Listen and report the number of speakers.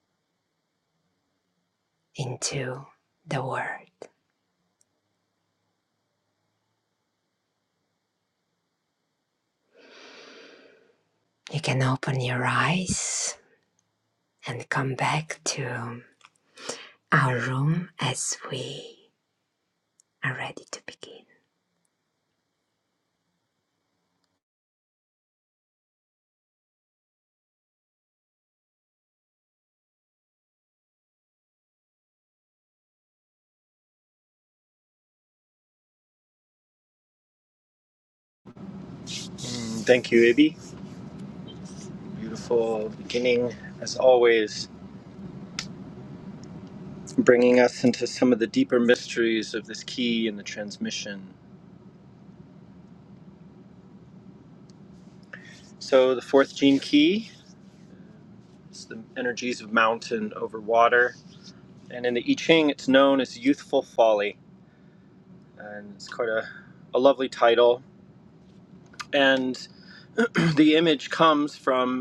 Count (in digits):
2